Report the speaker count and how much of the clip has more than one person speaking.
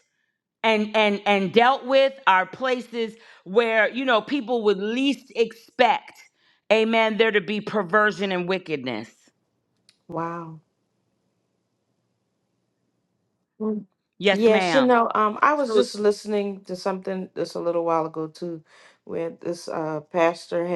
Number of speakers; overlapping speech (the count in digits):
2, about 4%